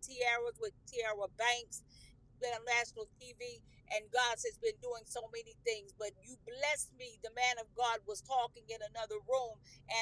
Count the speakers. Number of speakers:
1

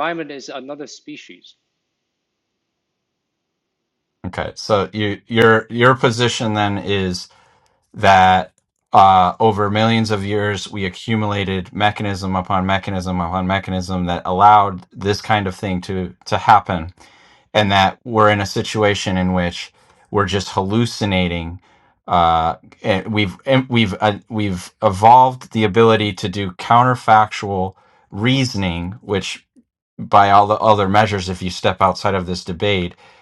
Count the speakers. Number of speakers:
2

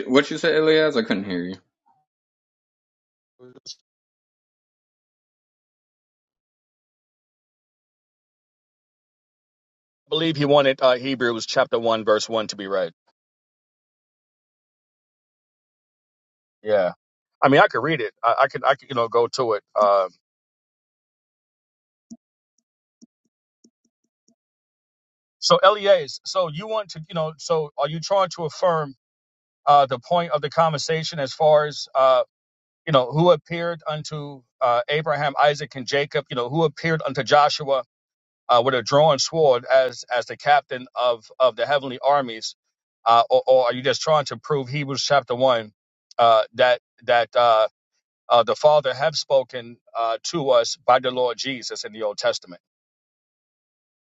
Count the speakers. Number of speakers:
2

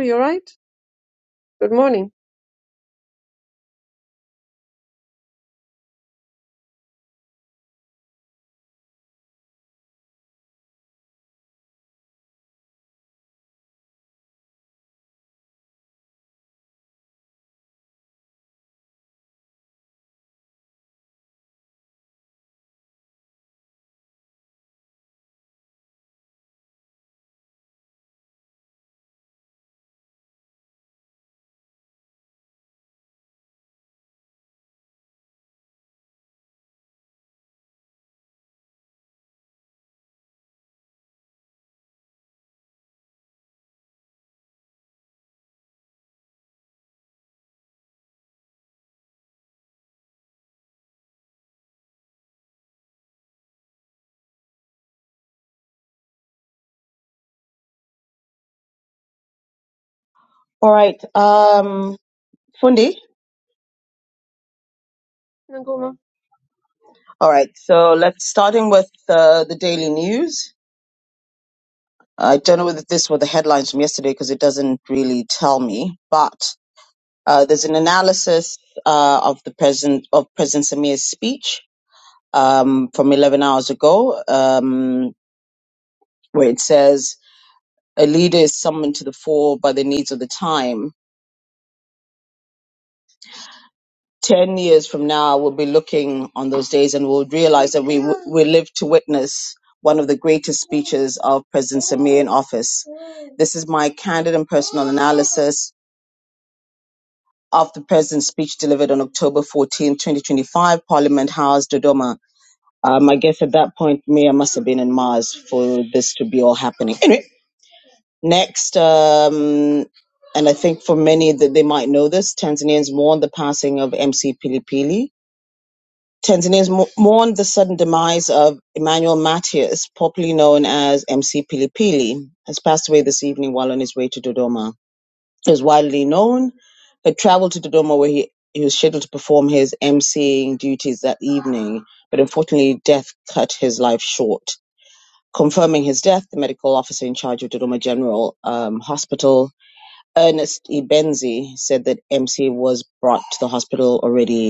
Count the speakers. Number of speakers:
2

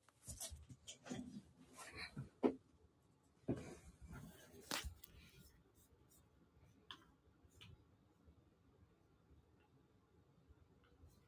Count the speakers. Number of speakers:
0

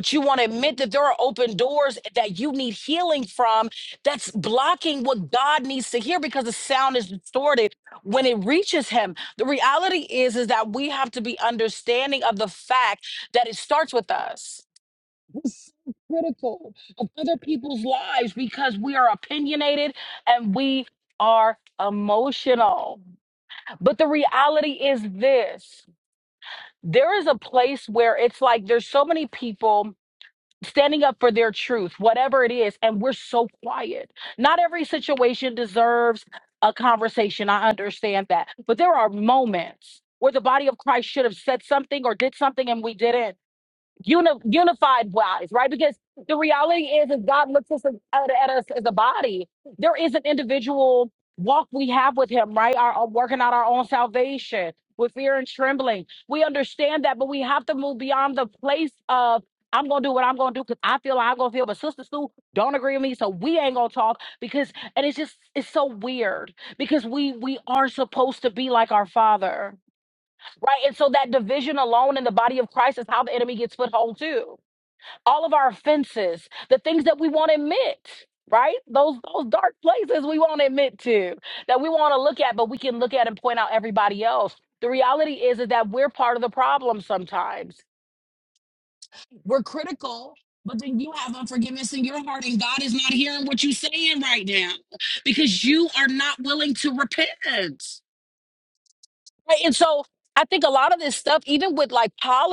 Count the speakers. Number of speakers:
1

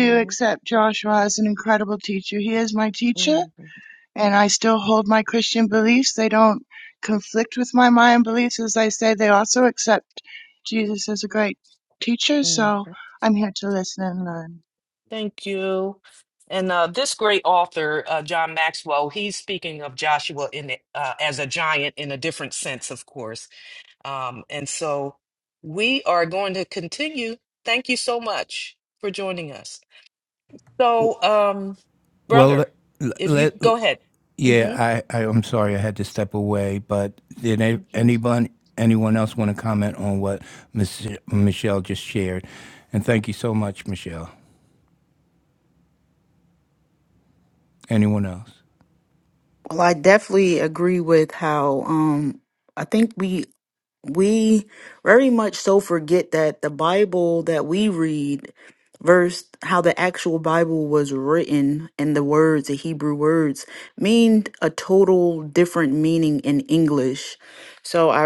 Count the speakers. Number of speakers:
4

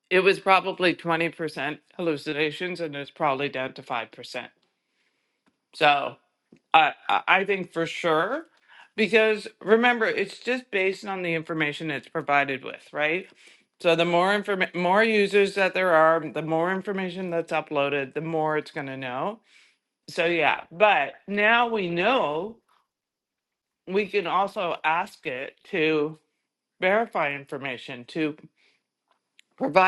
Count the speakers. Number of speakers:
1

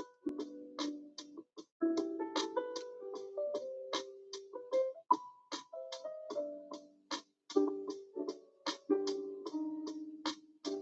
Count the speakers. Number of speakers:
0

